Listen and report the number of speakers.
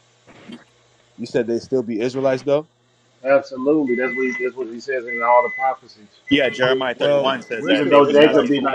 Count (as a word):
three